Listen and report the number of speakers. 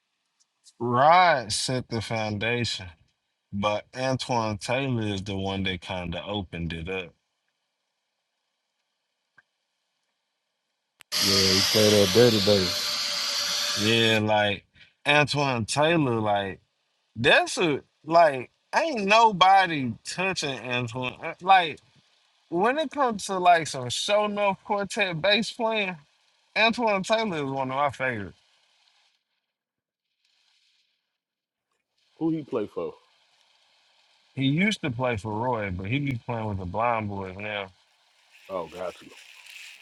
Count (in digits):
3